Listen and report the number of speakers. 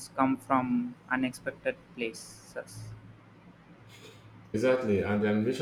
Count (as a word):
two